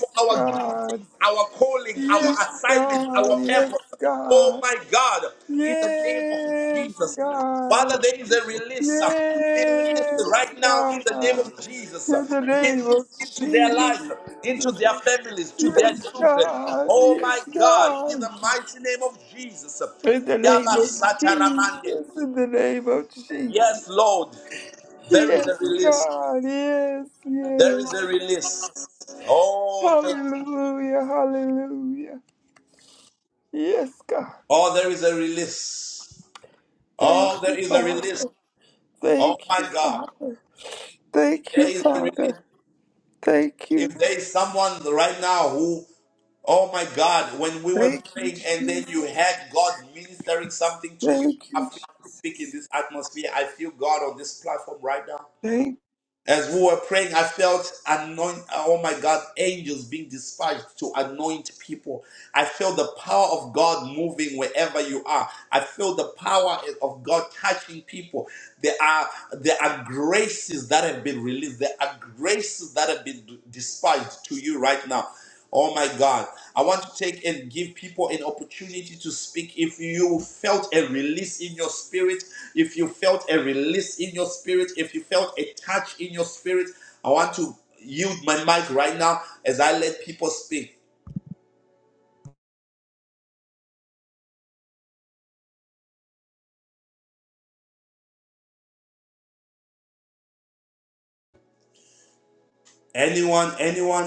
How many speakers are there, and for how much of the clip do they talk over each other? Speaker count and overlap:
two, about 16%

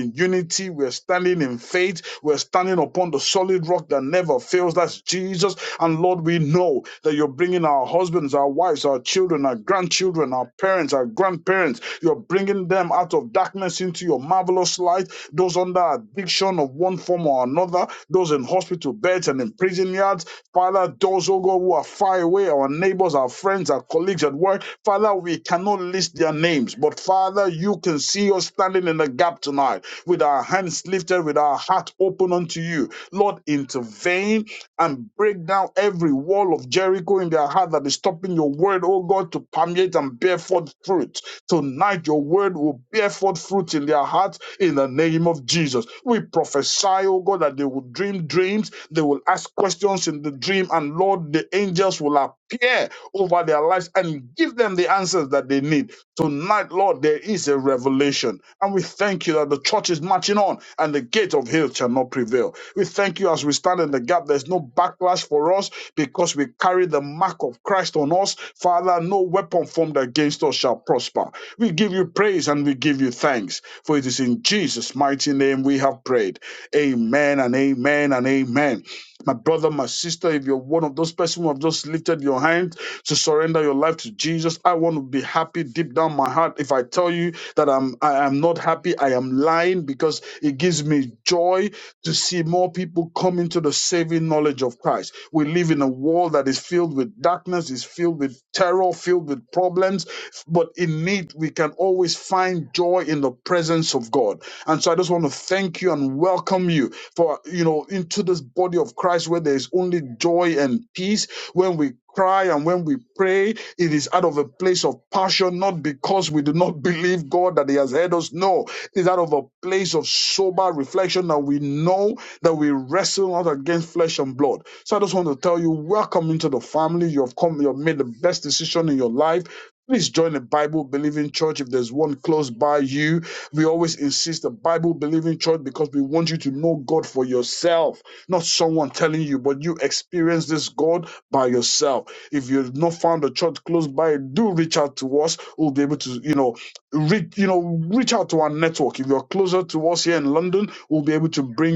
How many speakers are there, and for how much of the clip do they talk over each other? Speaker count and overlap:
one, no overlap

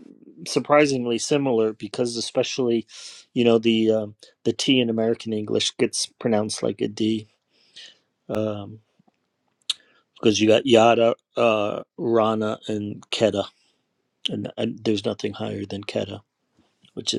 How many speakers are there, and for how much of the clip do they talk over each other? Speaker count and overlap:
one, no overlap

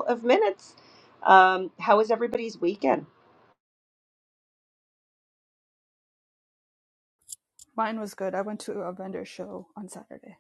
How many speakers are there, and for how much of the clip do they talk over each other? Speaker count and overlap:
two, no overlap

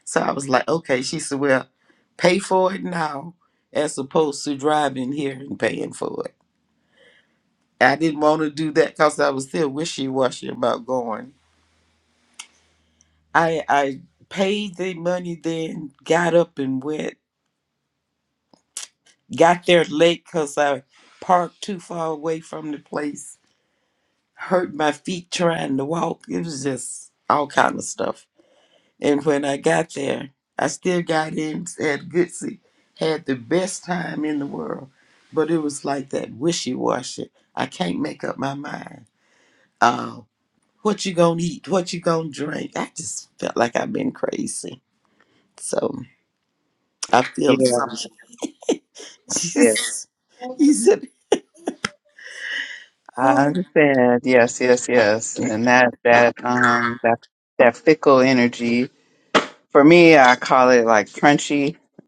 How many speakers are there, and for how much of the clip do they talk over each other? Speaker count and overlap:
two, about 1%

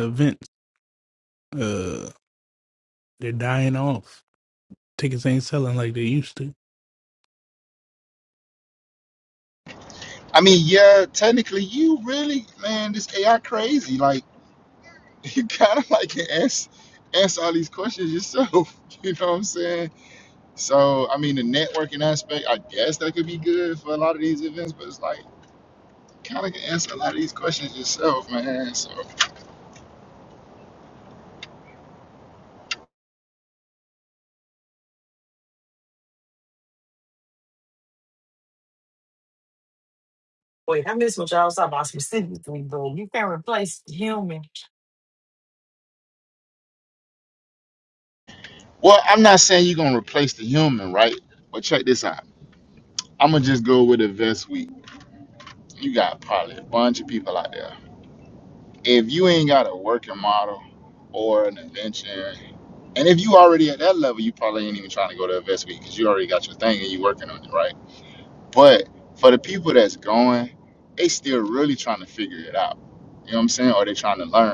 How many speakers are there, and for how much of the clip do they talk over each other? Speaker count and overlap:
three, no overlap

